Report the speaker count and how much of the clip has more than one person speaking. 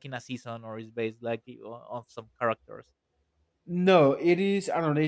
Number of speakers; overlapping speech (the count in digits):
2, no overlap